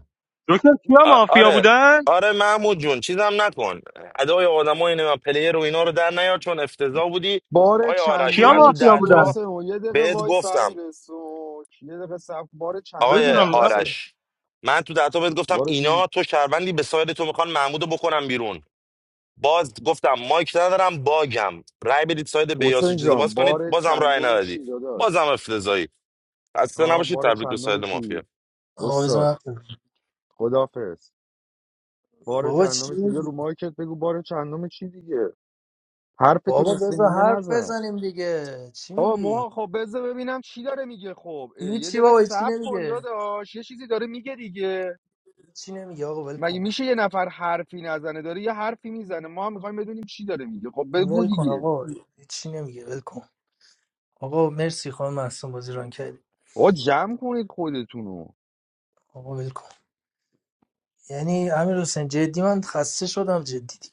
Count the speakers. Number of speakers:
4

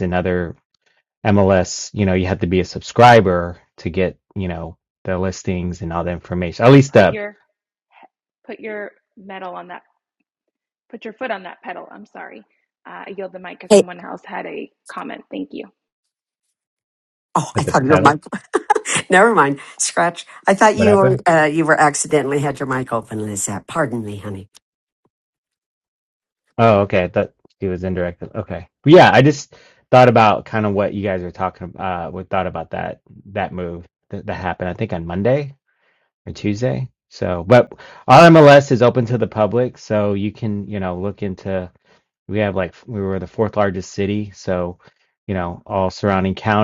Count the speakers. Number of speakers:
3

